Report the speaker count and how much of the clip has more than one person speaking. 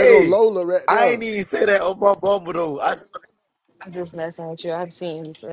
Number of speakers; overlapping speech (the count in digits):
3, about 13%